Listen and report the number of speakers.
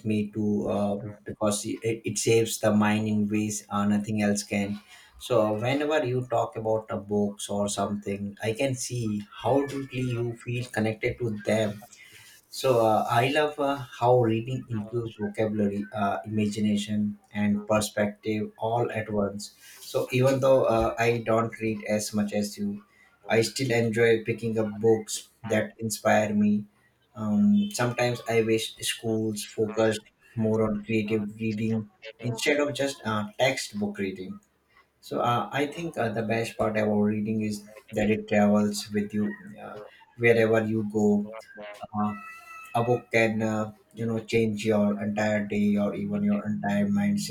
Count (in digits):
1